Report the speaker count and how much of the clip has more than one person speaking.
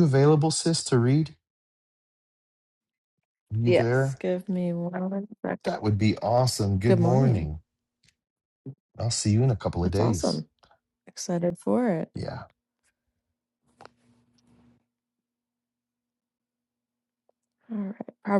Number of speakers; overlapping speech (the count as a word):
two, about 8%